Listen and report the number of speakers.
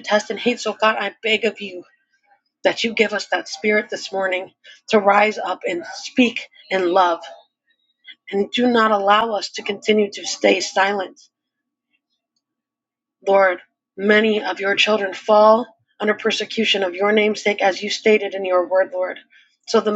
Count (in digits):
1